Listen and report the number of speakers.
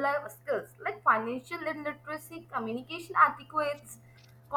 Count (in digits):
1